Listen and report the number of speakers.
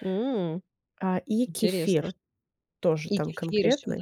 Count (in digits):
2